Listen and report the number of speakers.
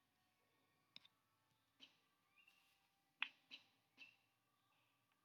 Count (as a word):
zero